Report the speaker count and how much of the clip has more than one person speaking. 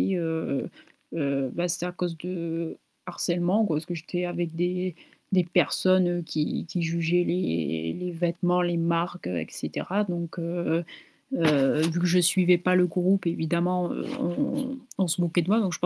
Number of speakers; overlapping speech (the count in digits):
1, no overlap